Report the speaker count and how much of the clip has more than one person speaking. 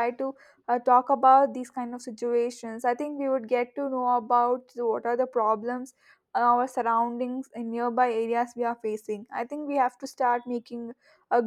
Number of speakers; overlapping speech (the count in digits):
1, no overlap